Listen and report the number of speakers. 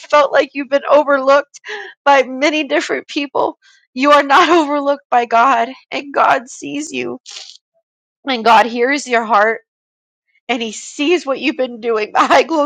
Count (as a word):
one